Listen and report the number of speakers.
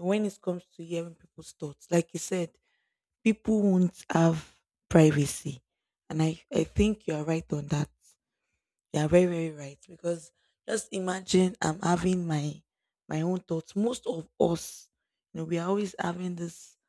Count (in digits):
1